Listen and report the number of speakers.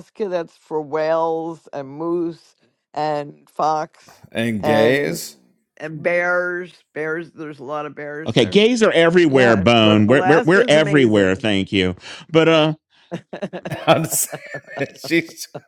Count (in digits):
3